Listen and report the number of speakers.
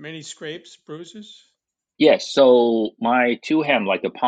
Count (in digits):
2